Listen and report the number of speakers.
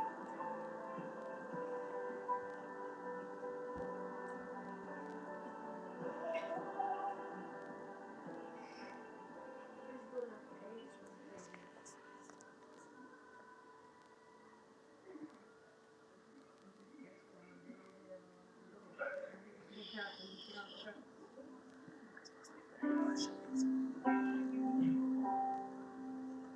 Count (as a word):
zero